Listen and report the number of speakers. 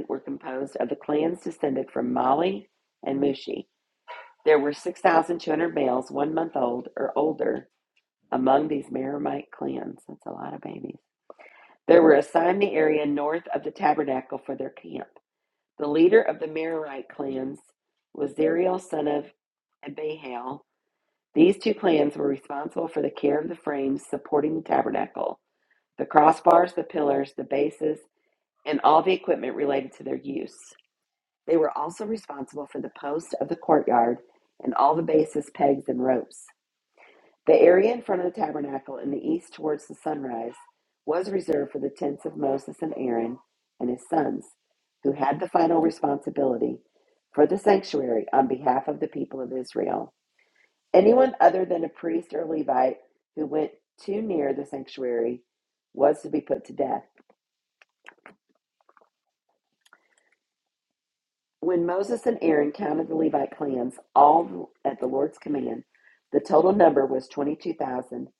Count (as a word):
one